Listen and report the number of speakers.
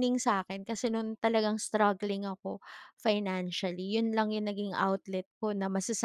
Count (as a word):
one